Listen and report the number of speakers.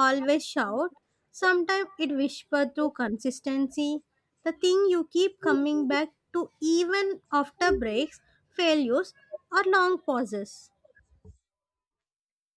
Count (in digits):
1